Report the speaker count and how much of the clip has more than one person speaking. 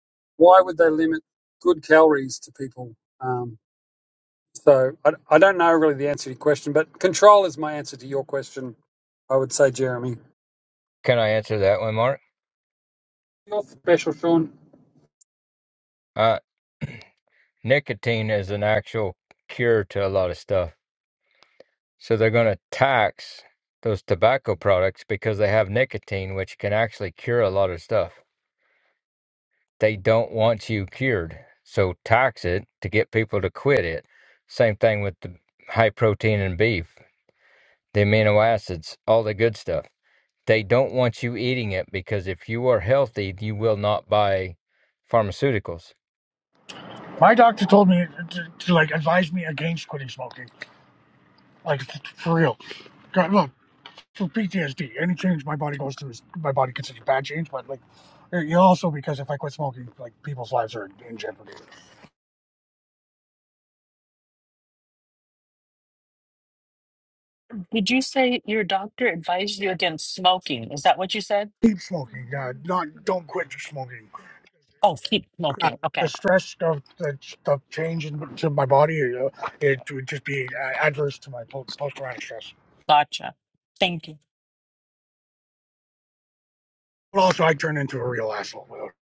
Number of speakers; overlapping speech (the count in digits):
4, about 1%